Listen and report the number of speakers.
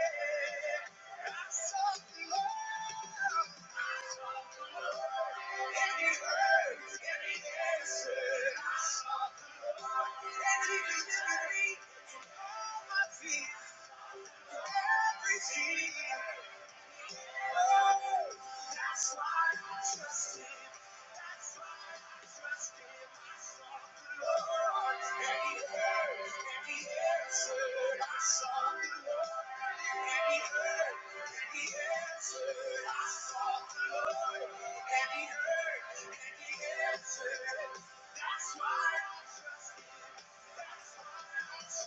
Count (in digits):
1